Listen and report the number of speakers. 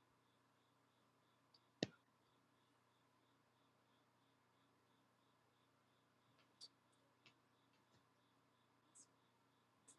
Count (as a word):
zero